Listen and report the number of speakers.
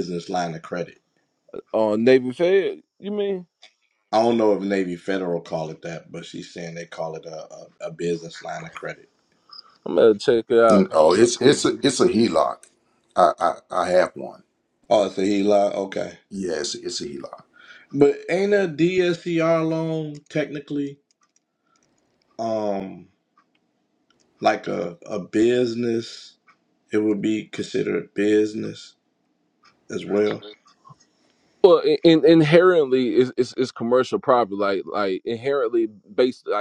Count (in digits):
3